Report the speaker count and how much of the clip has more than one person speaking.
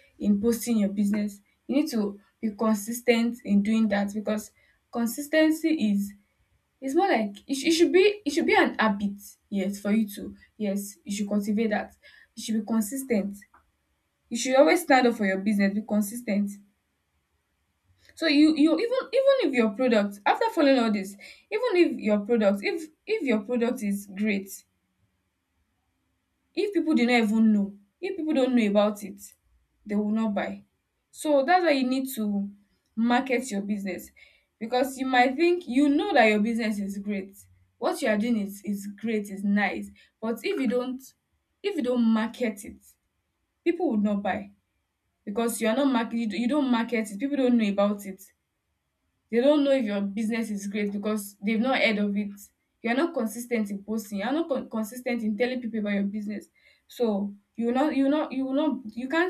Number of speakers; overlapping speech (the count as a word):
one, no overlap